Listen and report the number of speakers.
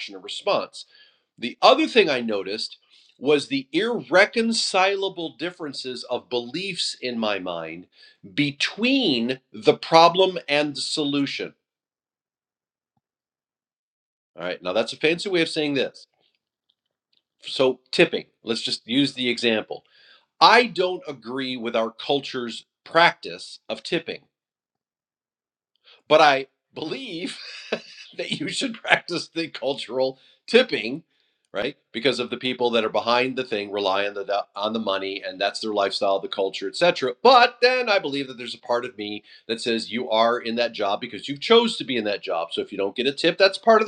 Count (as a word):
one